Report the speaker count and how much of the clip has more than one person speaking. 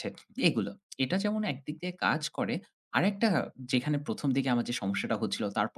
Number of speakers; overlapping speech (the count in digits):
1, no overlap